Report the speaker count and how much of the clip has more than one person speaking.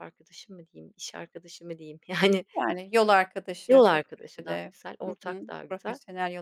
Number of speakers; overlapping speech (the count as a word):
two, about 24%